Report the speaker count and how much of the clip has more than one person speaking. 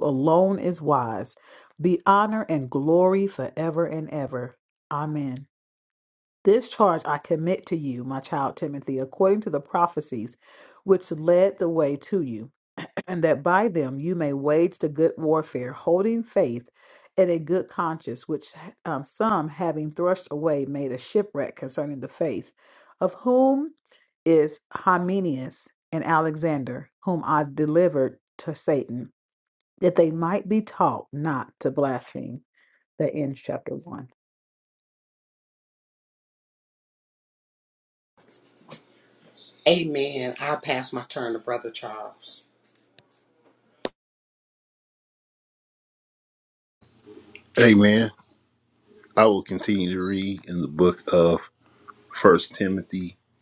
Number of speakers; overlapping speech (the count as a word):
three, no overlap